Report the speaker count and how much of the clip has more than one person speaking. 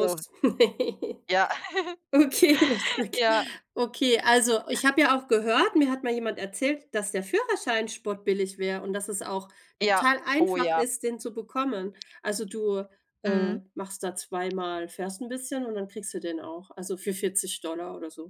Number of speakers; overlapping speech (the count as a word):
two, about 6%